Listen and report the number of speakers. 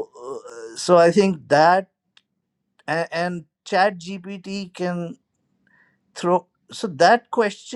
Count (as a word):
one